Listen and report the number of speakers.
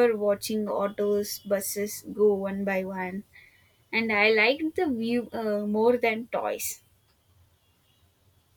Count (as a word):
one